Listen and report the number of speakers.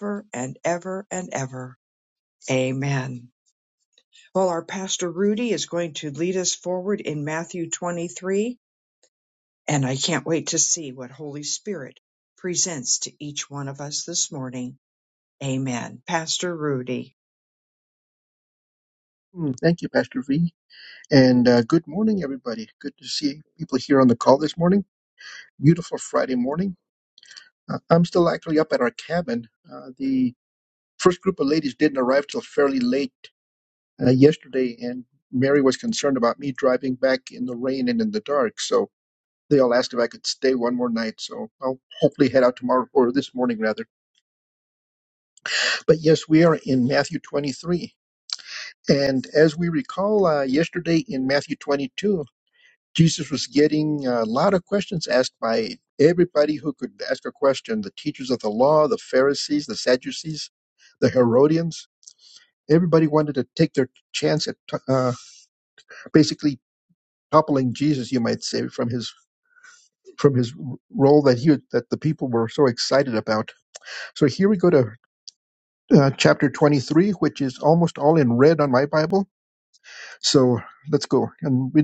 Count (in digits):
2